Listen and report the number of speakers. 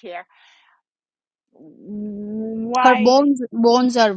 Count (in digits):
2